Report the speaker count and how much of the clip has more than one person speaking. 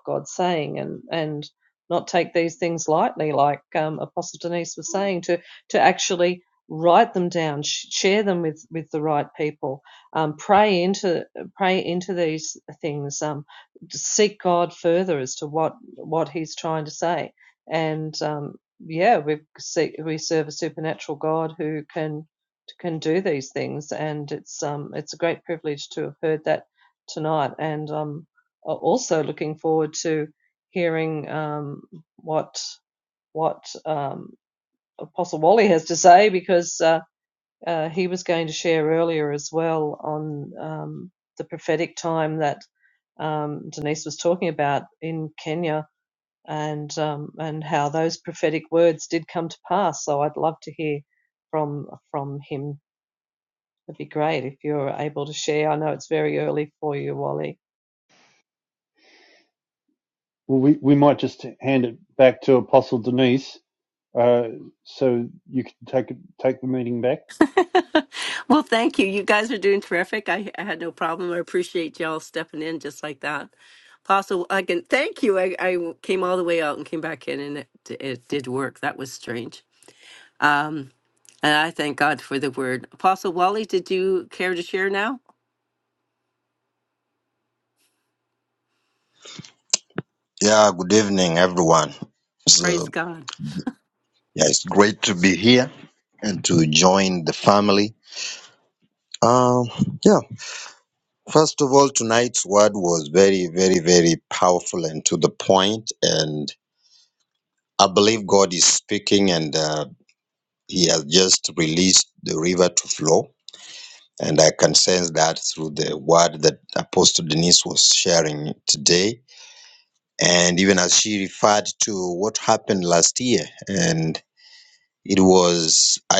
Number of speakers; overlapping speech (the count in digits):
4, under 1%